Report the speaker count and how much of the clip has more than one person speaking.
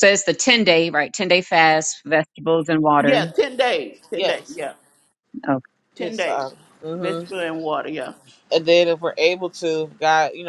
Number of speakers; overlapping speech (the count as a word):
three, about 13%